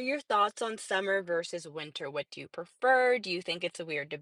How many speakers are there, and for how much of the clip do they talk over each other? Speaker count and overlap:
1, no overlap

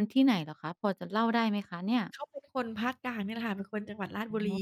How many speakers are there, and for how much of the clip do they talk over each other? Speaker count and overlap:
2, no overlap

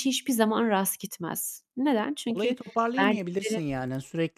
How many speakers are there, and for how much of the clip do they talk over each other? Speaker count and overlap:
2, about 22%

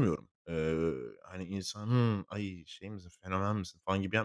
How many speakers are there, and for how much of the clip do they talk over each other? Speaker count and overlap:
1, no overlap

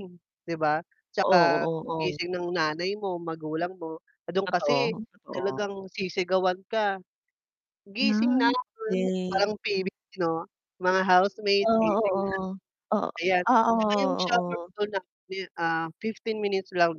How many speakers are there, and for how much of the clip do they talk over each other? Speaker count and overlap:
2, about 22%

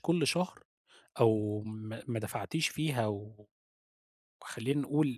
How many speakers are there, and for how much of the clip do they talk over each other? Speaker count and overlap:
1, no overlap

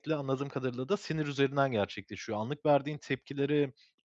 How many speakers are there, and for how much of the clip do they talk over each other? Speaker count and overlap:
1, no overlap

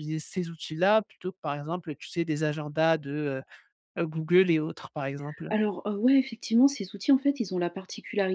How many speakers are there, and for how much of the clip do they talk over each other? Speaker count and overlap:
2, under 1%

